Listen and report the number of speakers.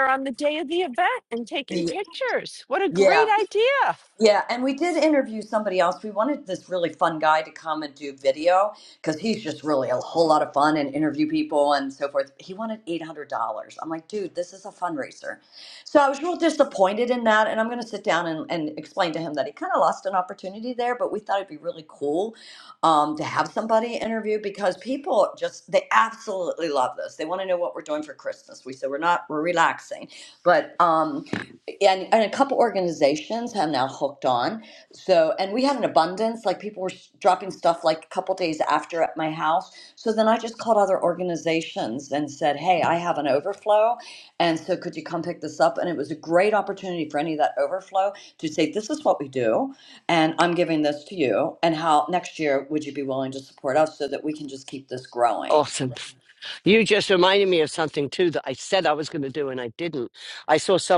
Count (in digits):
3